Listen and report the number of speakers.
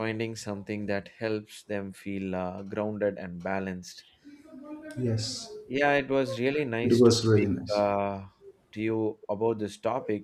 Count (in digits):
2